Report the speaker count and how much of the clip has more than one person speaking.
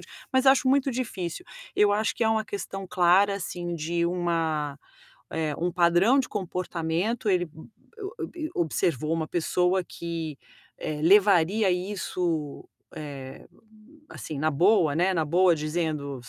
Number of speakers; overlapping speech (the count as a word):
one, no overlap